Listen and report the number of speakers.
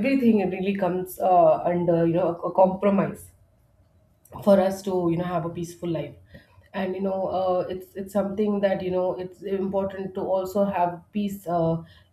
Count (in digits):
1